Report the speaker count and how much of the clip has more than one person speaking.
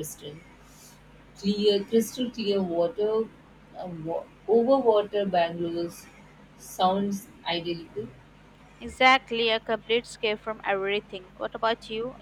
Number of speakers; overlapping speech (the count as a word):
two, no overlap